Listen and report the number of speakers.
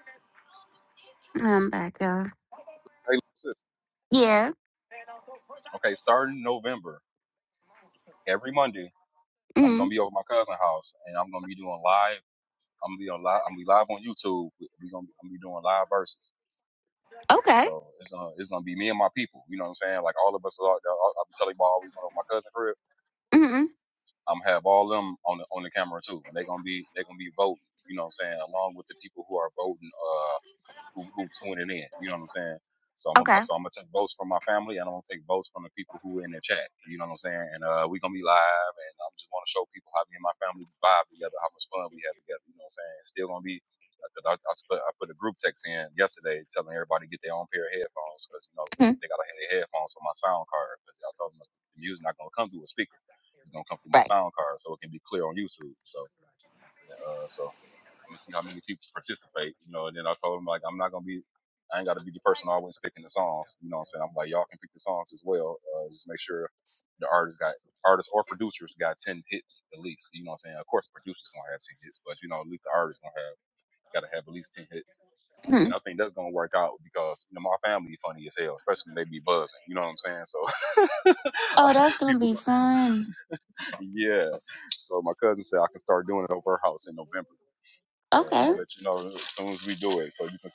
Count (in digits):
2